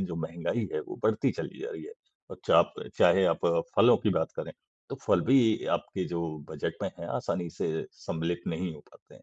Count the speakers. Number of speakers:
1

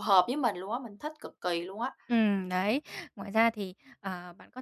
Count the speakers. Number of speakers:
2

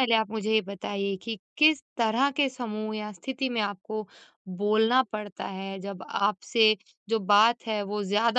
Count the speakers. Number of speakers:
1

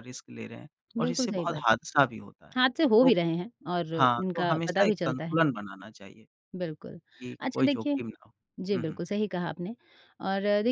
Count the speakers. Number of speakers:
2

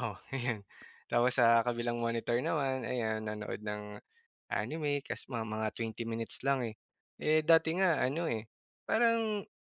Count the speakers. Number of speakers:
1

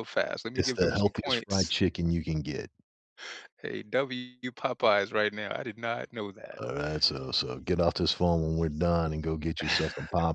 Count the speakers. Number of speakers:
2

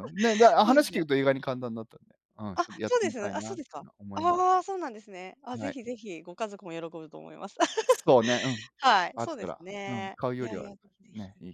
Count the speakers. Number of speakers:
2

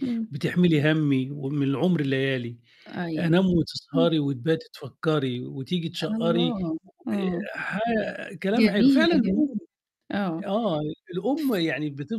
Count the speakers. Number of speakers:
2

